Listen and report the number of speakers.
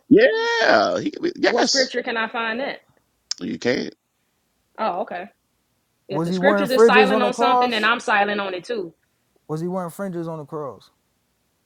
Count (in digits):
3